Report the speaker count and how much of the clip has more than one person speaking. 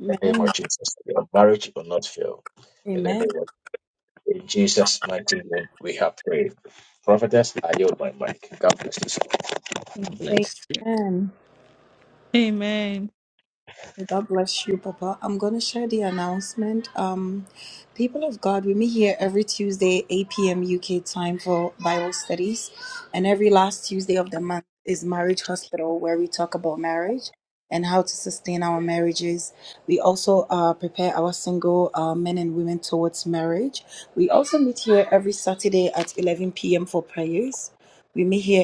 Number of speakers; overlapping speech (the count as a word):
three, about 3%